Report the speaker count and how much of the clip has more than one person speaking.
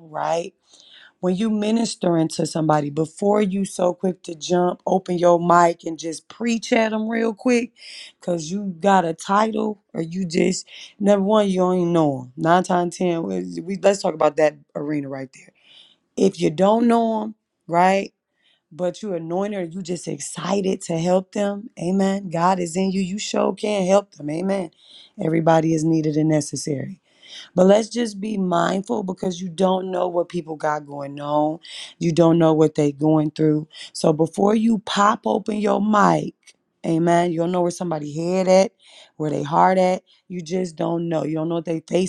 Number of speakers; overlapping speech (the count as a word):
one, no overlap